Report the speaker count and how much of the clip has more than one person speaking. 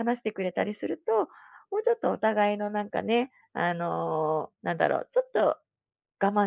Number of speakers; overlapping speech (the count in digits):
1, no overlap